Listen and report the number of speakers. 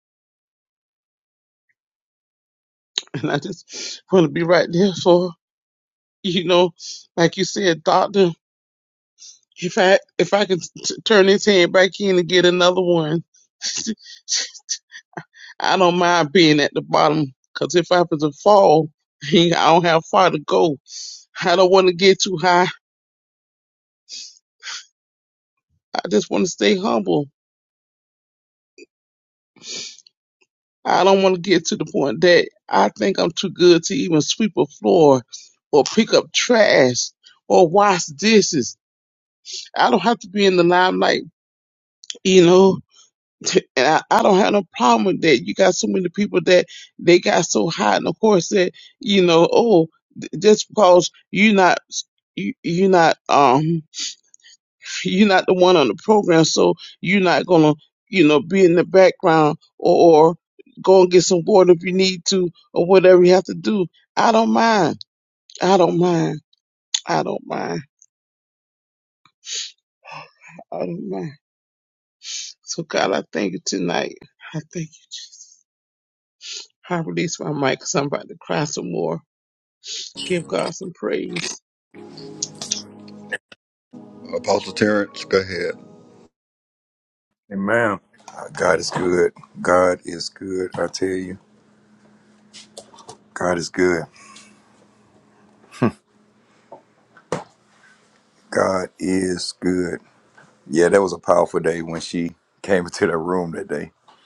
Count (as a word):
three